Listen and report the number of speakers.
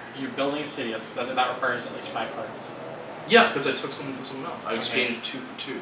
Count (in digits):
2